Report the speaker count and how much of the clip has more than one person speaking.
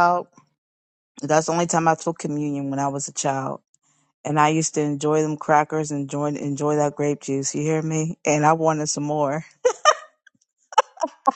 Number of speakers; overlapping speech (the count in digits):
1, no overlap